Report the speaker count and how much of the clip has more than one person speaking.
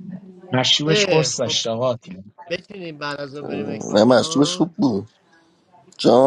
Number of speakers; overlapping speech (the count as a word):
three, about 31%